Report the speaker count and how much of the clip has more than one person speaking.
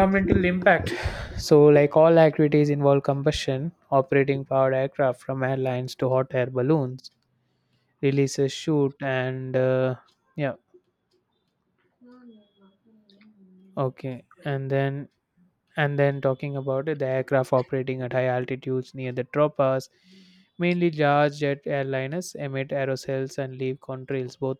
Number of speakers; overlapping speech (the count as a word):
one, no overlap